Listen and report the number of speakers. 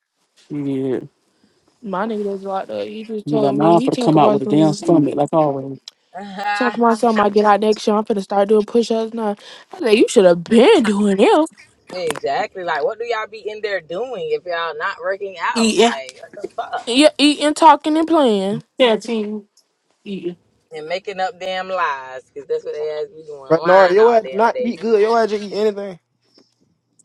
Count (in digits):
4